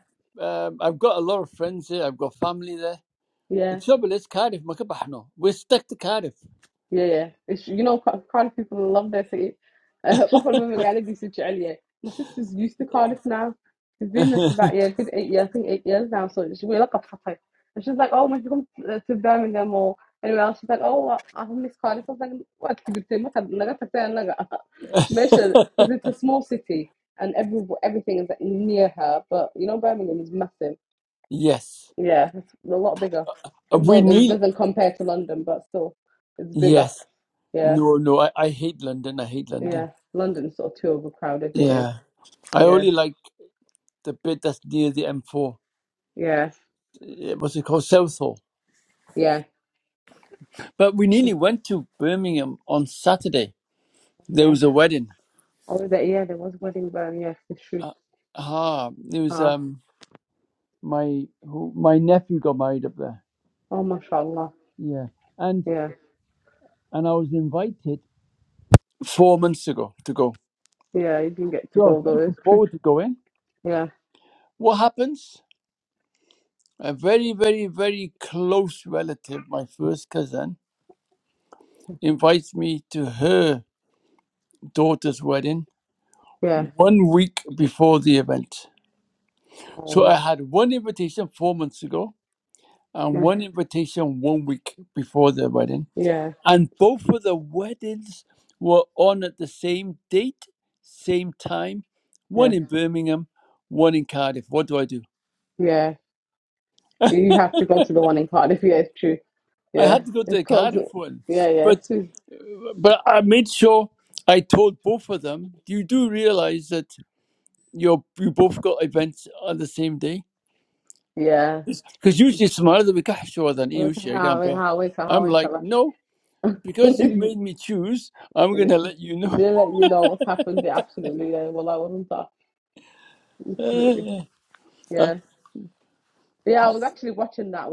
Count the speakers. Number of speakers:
2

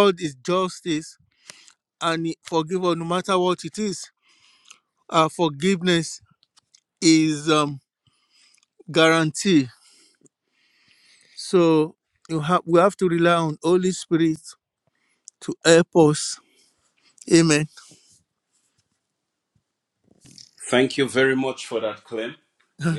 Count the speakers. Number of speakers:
2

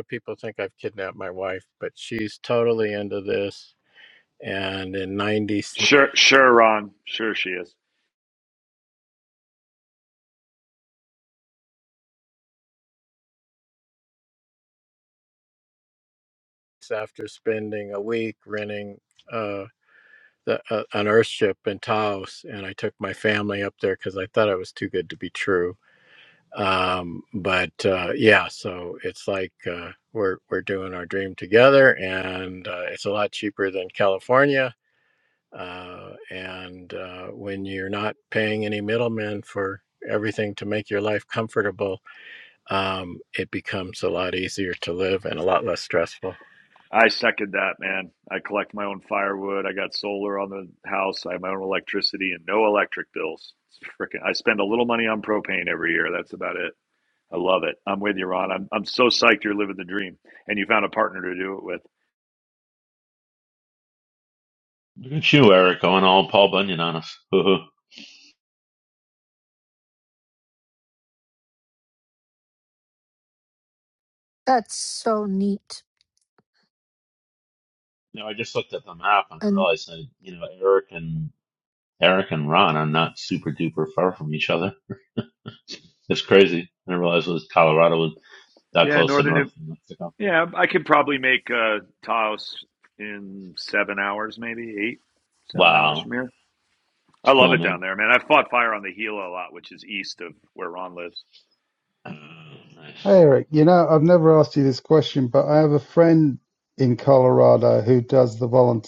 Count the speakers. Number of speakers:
5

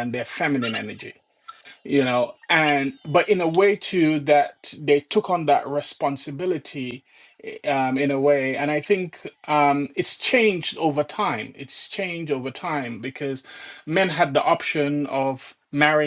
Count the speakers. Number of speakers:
1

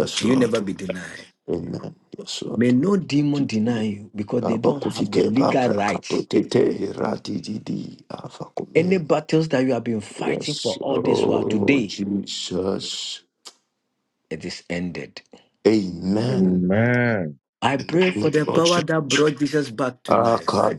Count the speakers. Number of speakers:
3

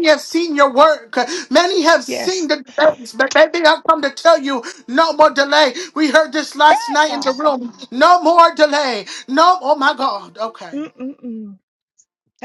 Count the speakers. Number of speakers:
2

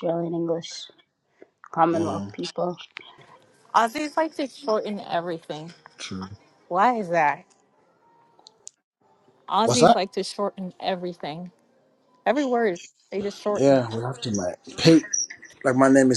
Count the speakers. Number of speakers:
3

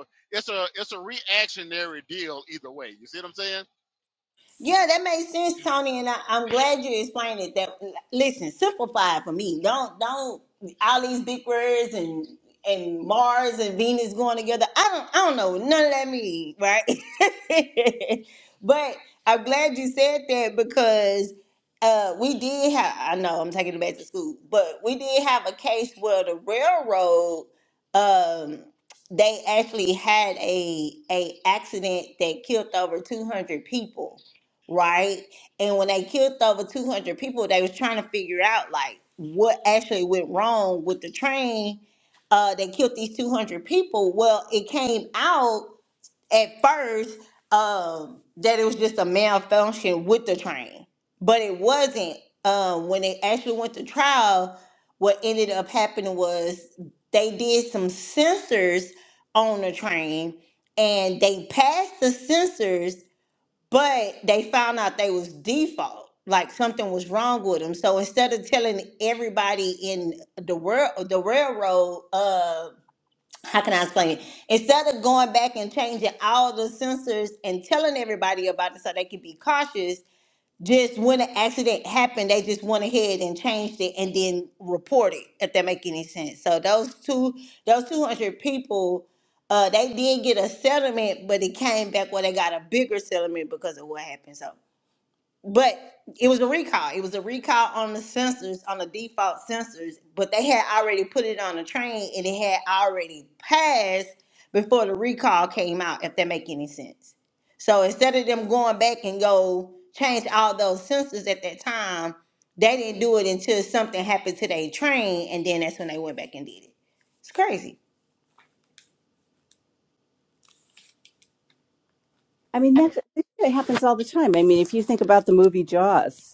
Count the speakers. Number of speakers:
3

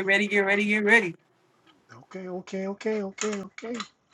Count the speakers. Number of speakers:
2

